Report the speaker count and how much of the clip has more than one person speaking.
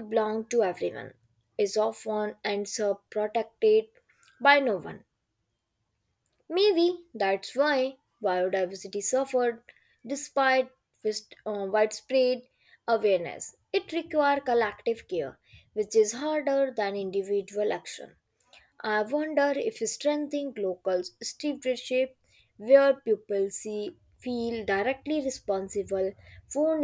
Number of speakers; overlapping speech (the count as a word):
one, no overlap